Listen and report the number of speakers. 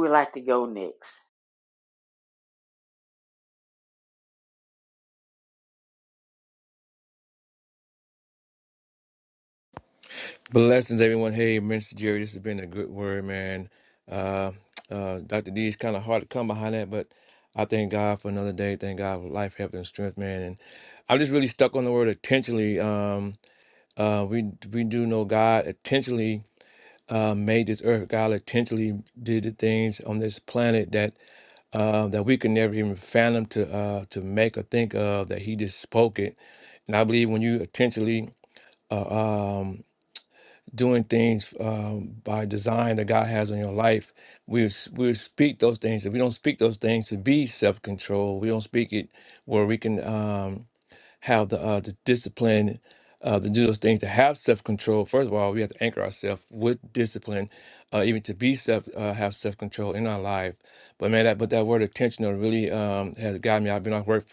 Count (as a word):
two